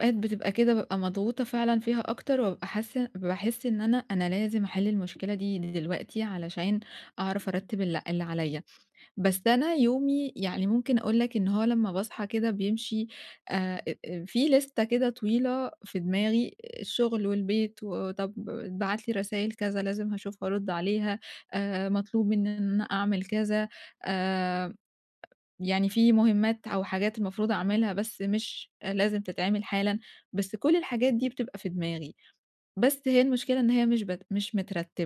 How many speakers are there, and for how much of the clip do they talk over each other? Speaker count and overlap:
1, no overlap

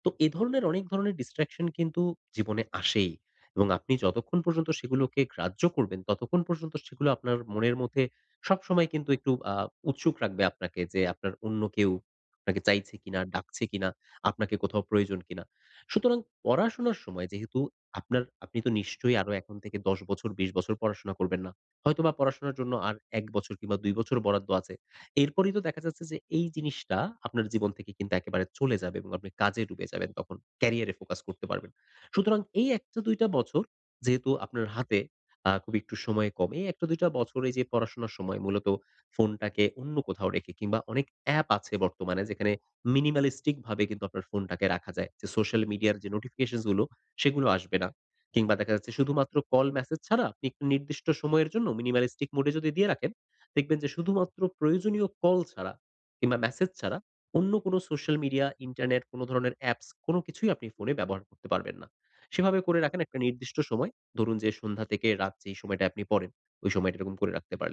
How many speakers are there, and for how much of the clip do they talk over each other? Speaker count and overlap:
1, no overlap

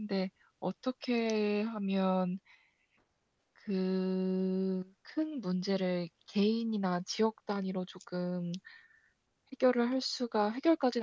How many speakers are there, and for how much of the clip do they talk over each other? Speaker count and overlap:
1, no overlap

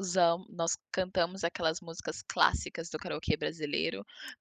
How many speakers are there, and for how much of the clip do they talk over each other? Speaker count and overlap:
1, no overlap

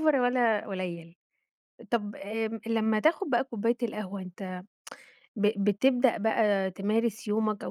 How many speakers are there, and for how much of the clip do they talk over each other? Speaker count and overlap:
1, no overlap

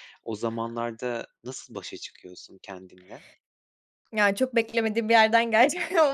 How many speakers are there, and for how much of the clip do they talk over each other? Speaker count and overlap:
2, no overlap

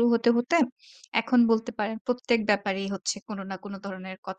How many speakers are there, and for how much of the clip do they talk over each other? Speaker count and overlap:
1, no overlap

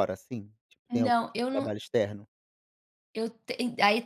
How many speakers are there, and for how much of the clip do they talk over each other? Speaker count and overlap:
2, about 11%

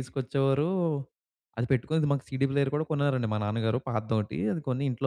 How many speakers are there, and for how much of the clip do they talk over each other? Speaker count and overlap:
1, no overlap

